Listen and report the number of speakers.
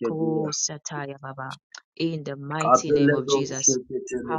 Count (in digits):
2